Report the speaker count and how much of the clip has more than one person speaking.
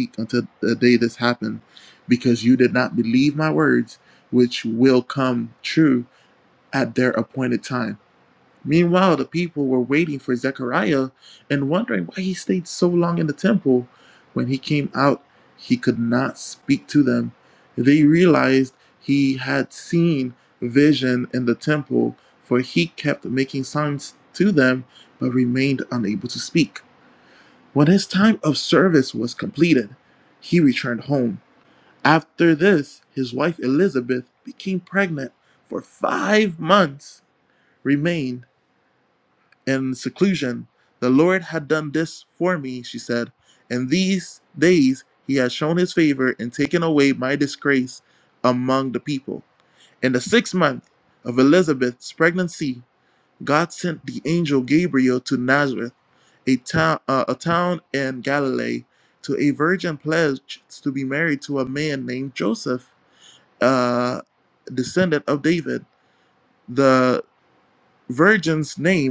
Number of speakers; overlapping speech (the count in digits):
1, no overlap